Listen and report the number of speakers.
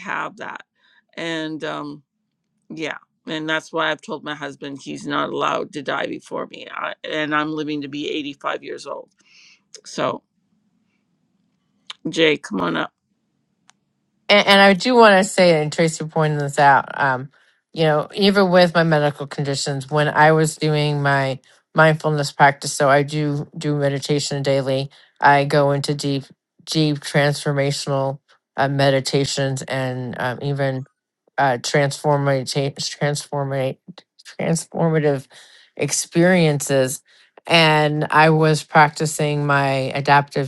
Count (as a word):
two